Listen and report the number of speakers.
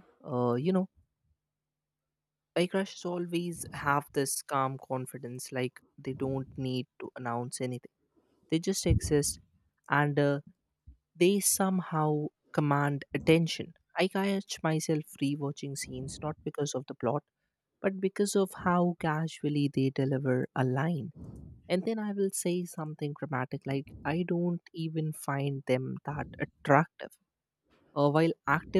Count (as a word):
one